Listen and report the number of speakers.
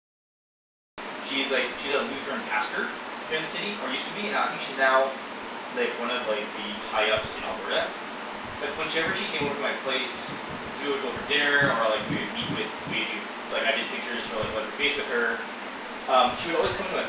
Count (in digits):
1